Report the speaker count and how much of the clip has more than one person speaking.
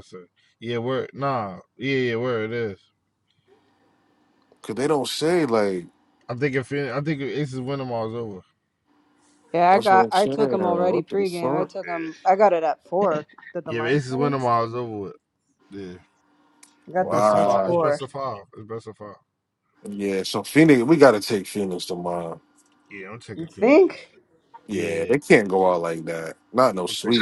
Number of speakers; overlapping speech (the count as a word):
three, about 17%